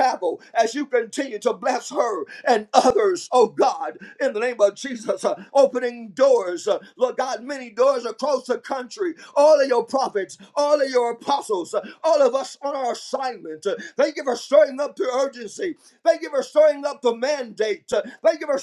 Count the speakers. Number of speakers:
1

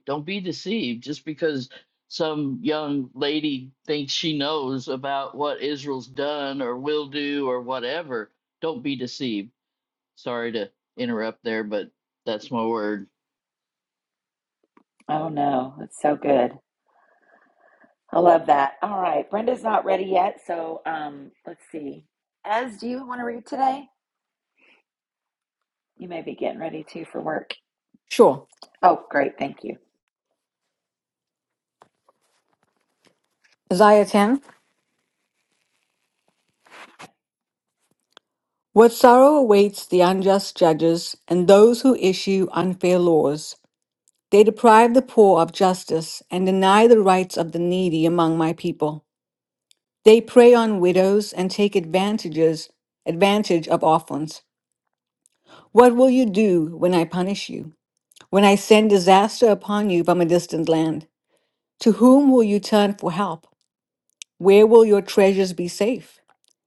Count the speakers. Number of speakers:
3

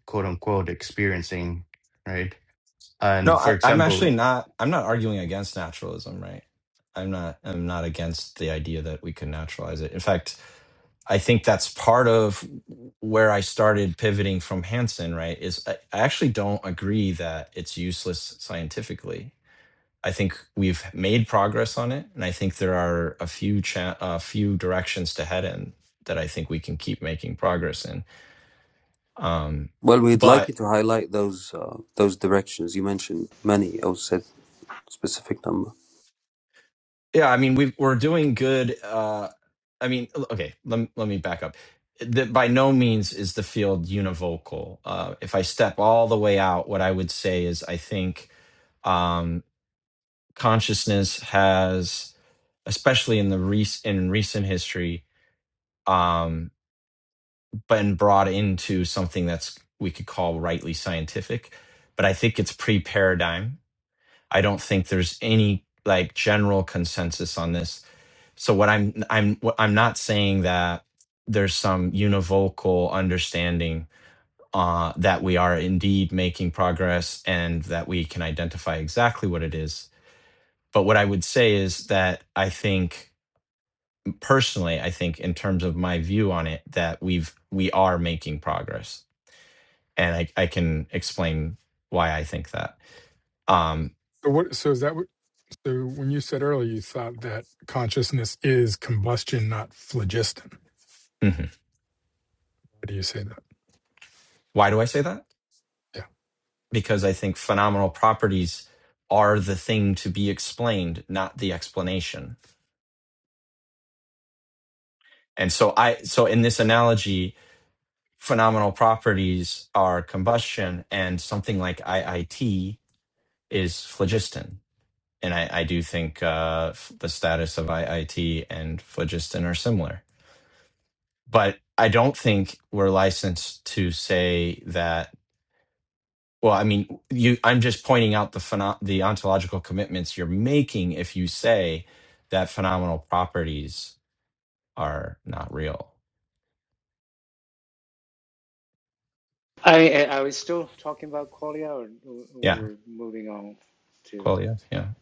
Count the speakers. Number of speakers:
5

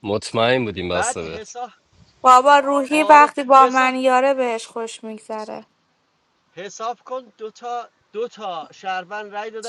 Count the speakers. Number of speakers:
3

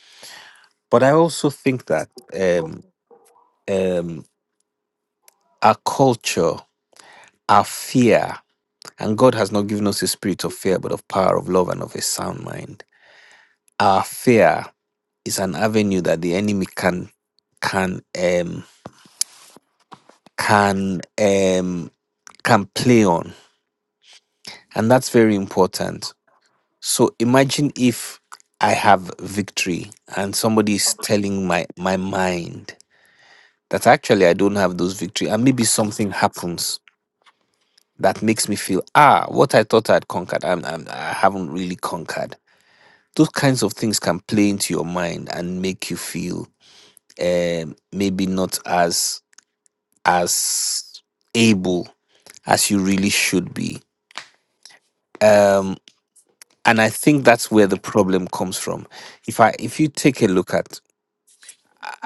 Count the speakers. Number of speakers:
1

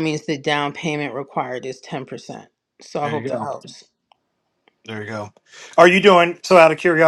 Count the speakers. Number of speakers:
2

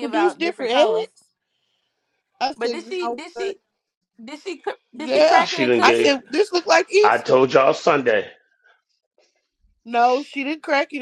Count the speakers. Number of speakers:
3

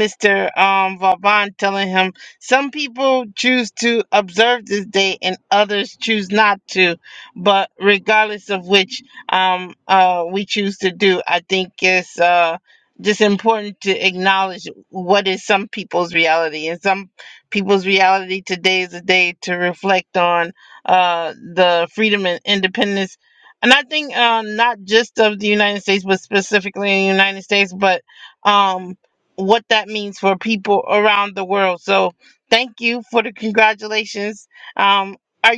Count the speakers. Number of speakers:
1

